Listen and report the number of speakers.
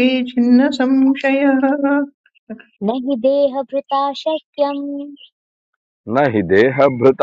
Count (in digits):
3